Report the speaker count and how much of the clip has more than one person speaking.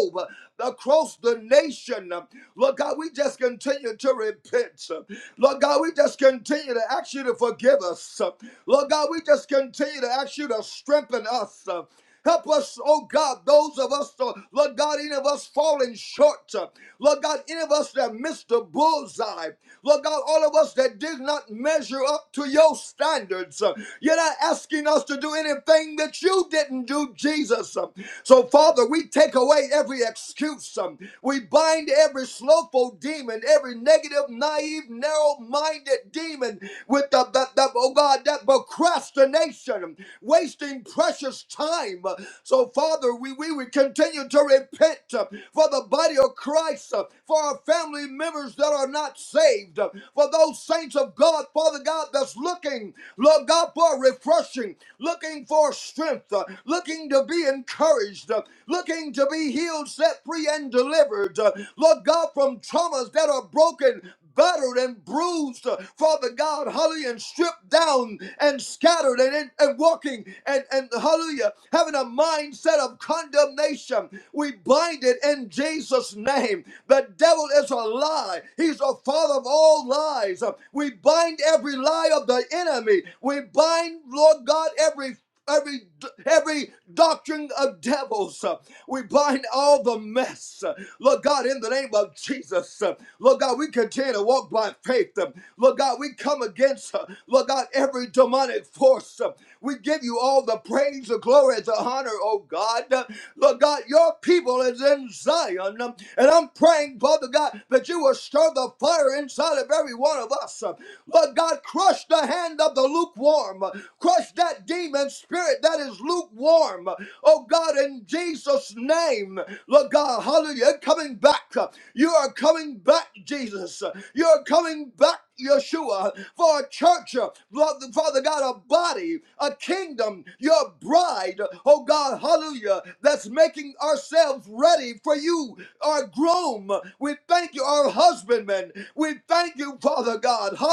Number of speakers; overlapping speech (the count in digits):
1, no overlap